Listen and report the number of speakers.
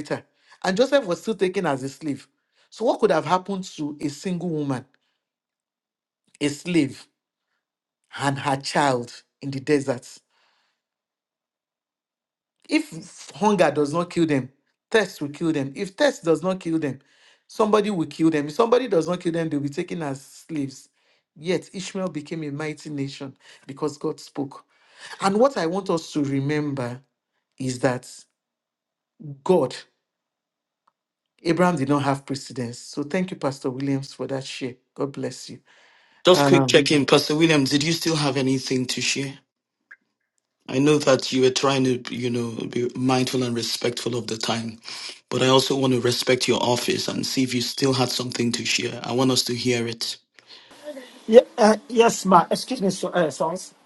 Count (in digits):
3